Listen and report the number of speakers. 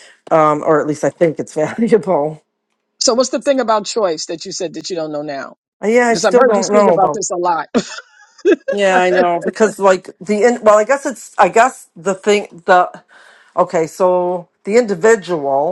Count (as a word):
two